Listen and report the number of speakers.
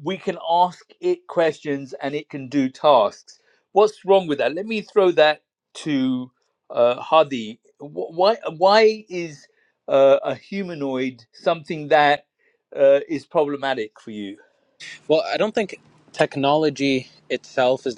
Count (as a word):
two